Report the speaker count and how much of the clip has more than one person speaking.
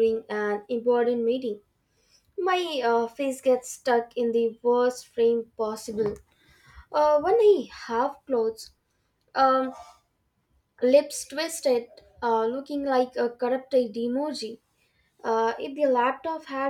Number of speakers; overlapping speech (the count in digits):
1, no overlap